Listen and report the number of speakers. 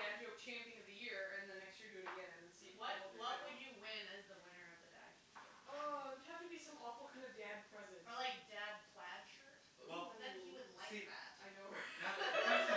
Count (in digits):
3